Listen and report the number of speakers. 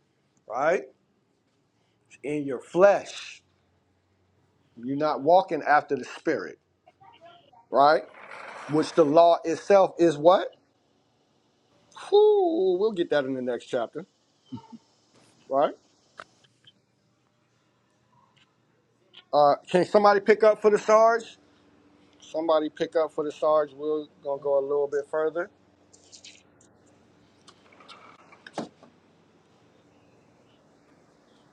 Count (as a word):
one